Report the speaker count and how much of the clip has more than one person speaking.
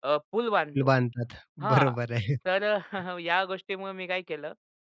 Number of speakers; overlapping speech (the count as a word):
two, about 10%